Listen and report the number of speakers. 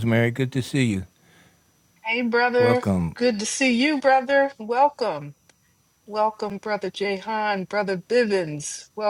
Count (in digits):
2